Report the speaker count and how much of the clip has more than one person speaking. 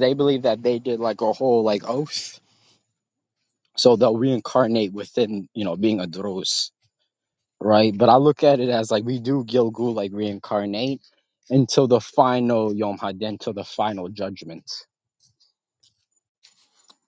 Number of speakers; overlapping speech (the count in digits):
1, no overlap